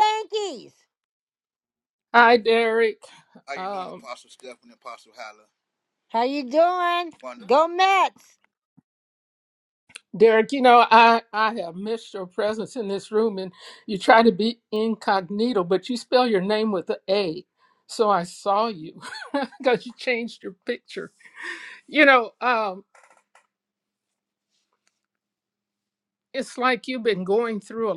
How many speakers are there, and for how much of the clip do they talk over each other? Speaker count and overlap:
3, about 2%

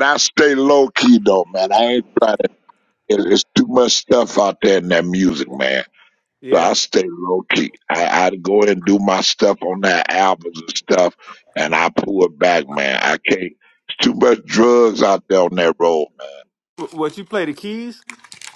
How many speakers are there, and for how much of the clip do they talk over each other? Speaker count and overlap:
2, about 1%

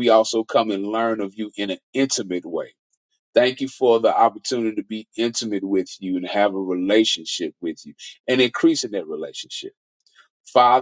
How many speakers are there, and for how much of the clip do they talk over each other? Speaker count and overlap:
1, no overlap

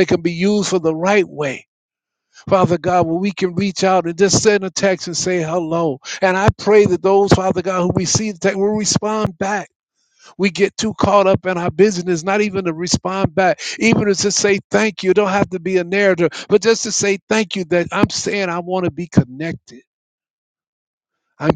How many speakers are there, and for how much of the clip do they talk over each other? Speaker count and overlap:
1, no overlap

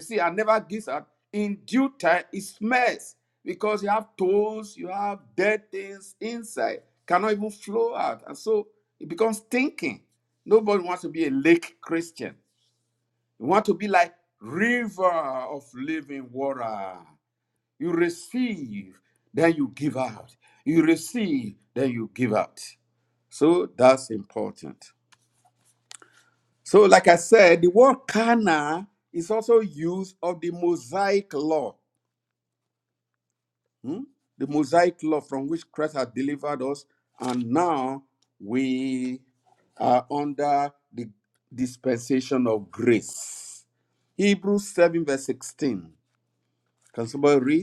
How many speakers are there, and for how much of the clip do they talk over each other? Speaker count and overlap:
1, no overlap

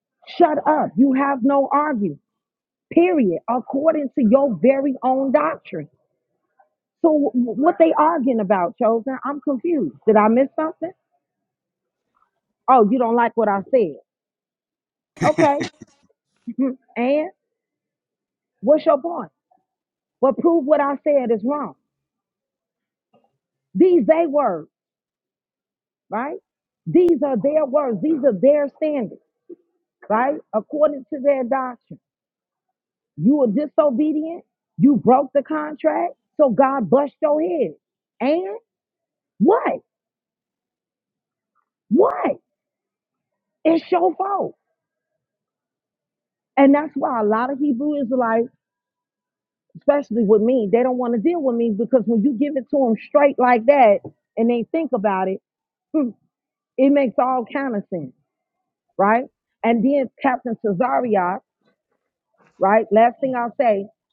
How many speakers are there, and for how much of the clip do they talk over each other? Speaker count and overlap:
1, no overlap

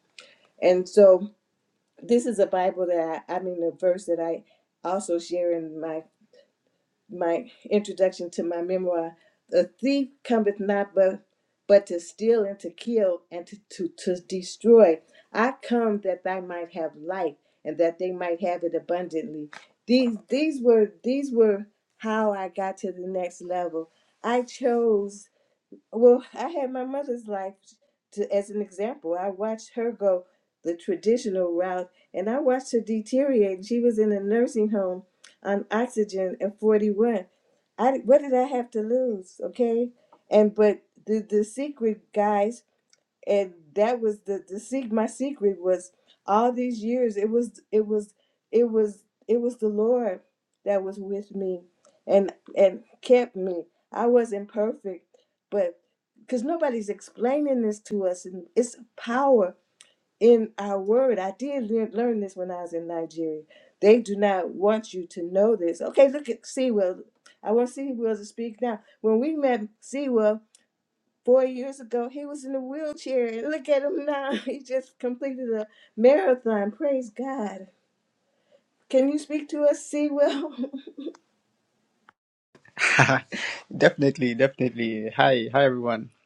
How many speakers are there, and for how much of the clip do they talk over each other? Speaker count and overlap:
2, no overlap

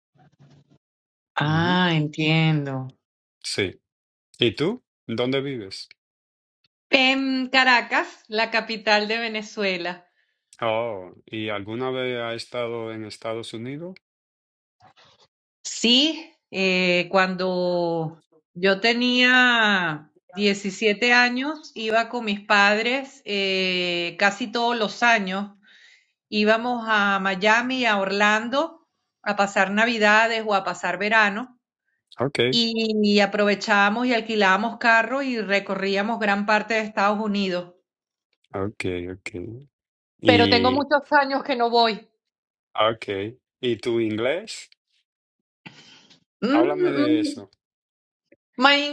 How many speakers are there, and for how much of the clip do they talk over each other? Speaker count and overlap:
2, about 4%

